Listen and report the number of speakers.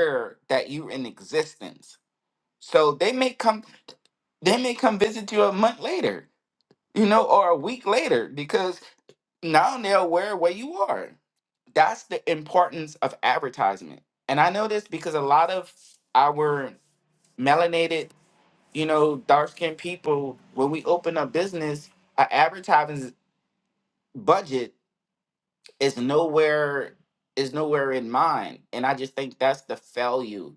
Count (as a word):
one